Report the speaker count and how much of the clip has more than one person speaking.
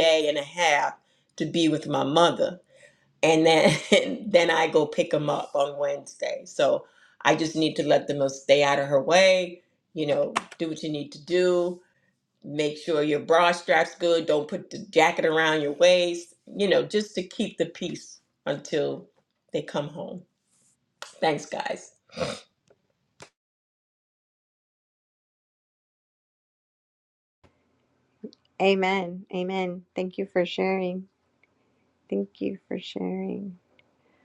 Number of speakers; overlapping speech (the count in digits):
2, no overlap